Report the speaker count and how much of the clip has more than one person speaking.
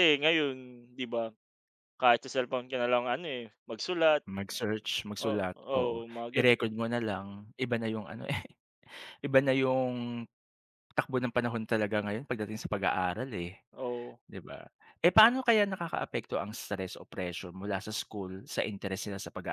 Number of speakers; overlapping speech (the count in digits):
2, about 6%